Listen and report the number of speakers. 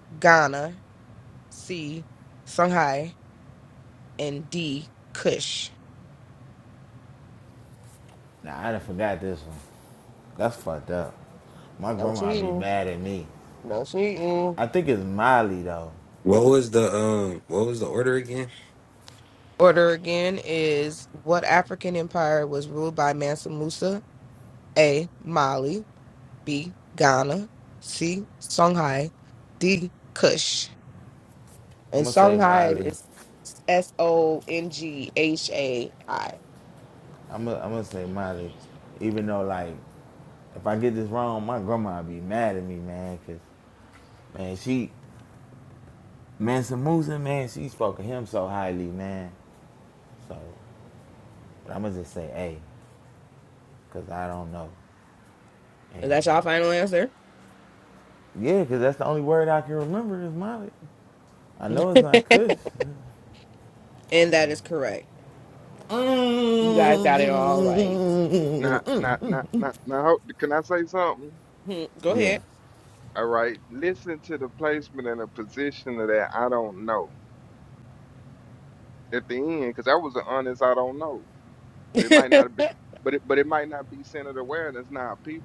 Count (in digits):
4